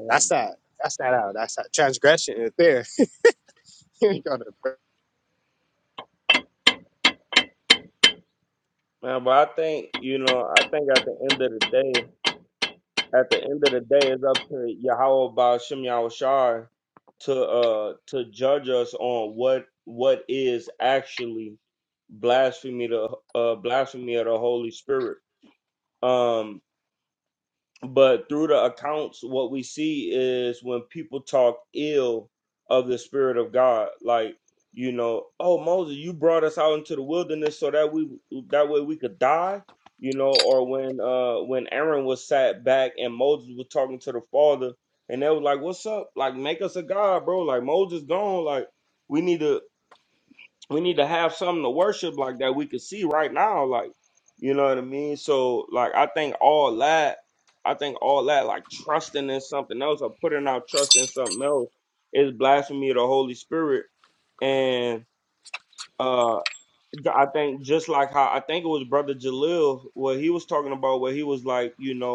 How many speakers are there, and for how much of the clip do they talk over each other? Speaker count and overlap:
2, under 1%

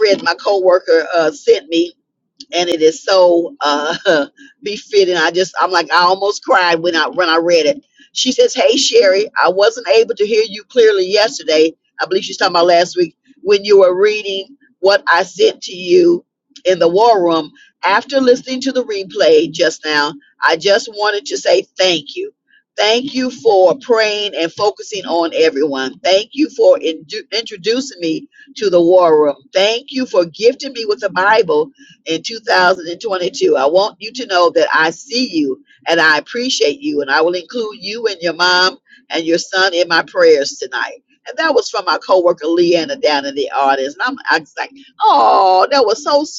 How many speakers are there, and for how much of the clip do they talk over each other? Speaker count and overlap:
1, no overlap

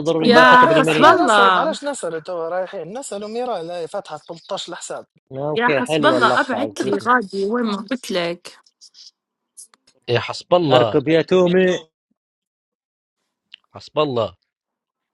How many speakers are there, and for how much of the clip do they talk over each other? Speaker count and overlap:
4, about 22%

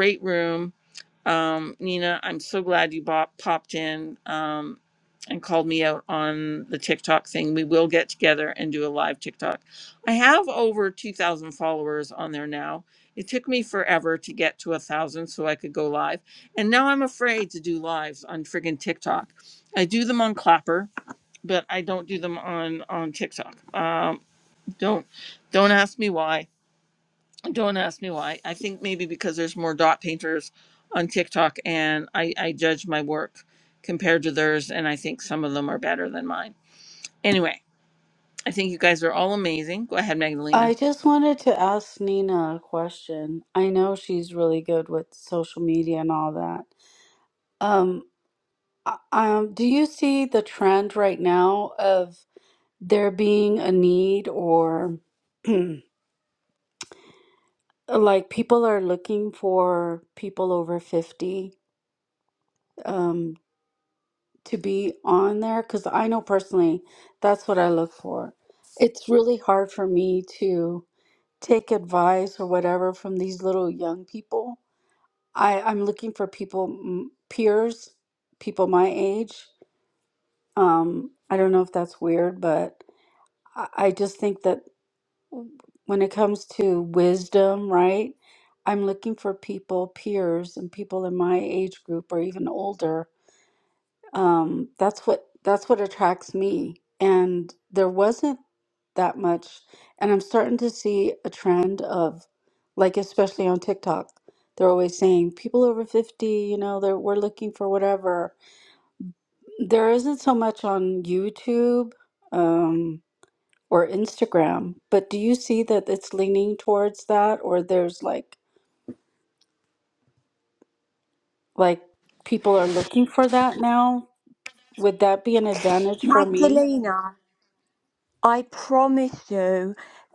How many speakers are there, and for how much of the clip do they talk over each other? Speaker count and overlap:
3, about 1%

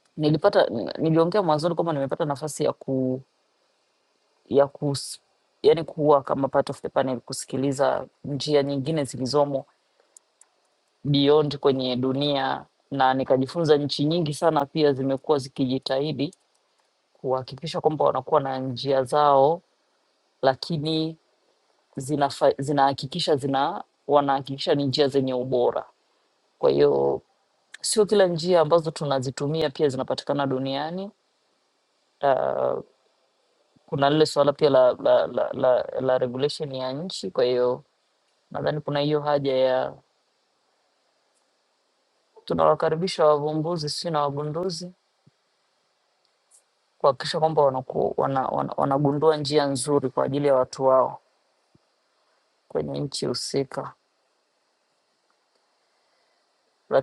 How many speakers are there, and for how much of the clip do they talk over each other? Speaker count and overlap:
1, no overlap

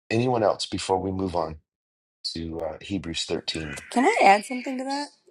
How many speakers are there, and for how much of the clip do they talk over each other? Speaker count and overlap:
2, no overlap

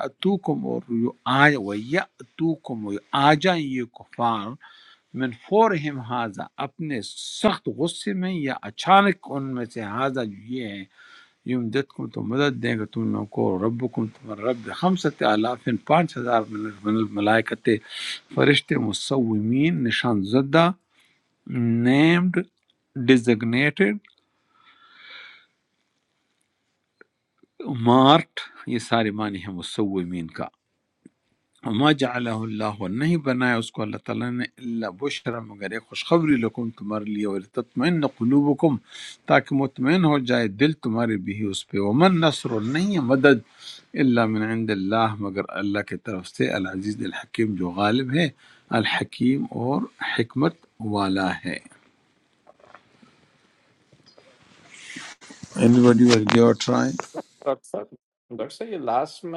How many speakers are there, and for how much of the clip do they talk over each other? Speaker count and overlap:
2, no overlap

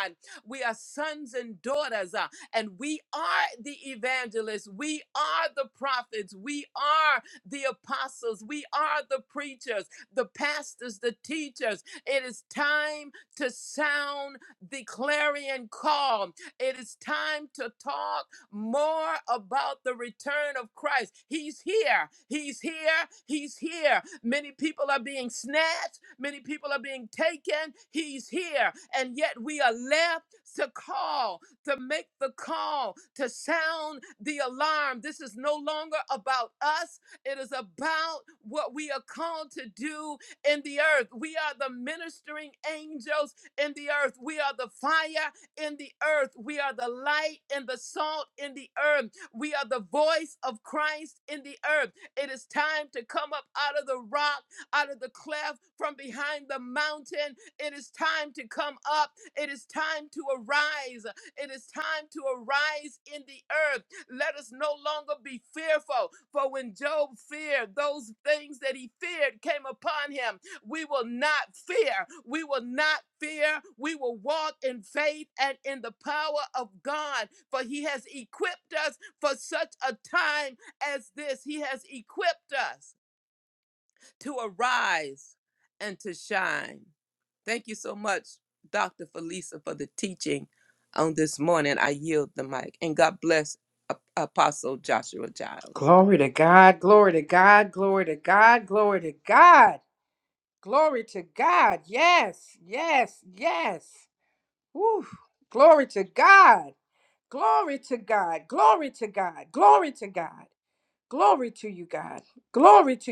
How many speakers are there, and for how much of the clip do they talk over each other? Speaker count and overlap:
2, no overlap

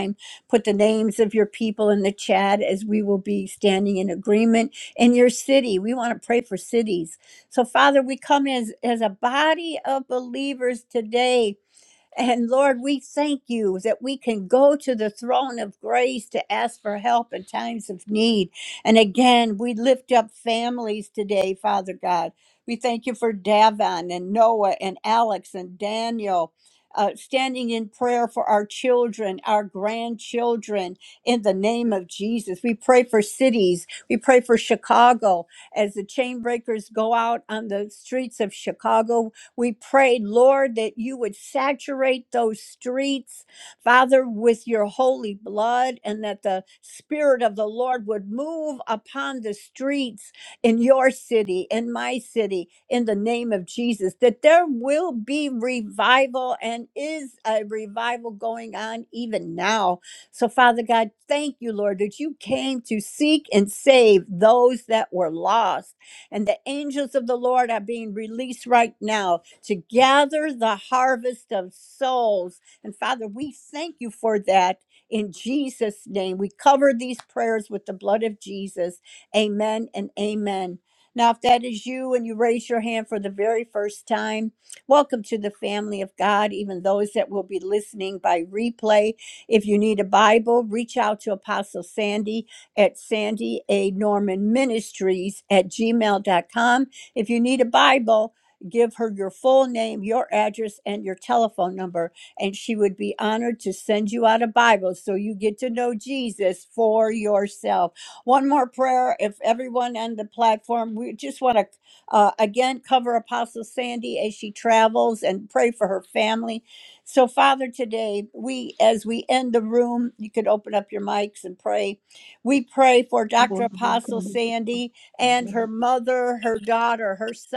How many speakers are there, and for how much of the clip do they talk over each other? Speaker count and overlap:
1, no overlap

